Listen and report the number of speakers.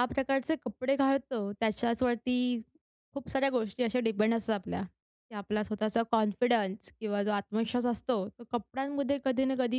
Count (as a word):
one